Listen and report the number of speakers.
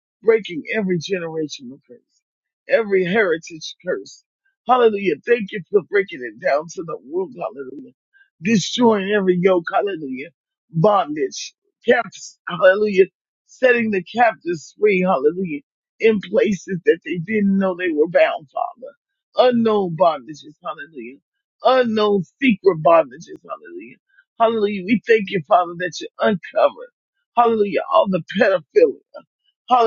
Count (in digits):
1